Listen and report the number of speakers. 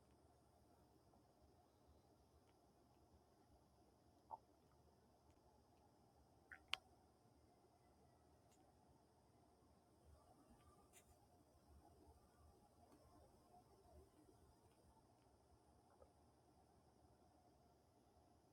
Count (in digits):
0